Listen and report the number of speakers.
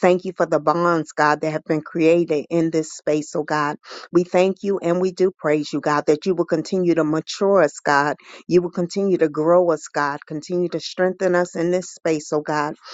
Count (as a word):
one